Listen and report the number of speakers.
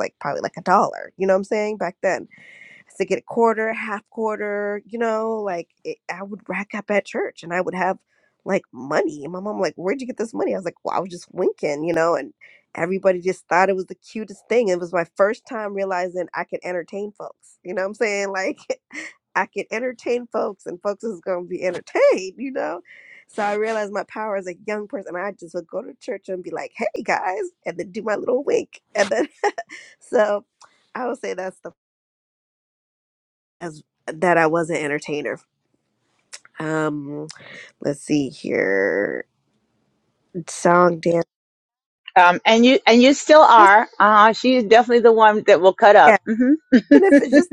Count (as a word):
two